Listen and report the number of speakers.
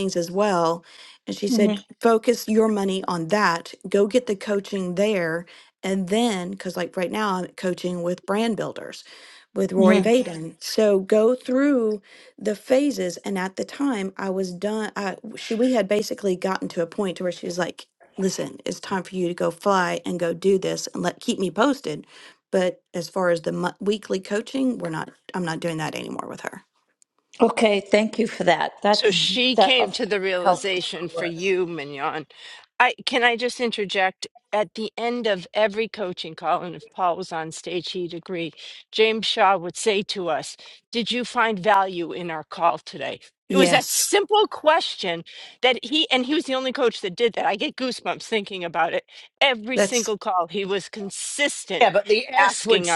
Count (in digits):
4